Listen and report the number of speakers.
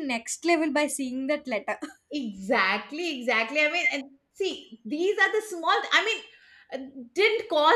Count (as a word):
two